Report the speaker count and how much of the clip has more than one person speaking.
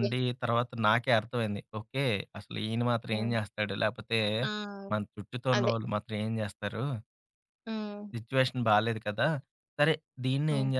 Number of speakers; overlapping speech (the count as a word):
two, about 6%